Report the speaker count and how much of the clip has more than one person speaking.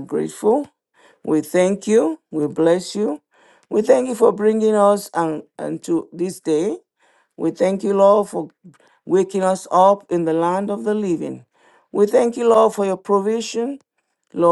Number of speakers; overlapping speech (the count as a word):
one, no overlap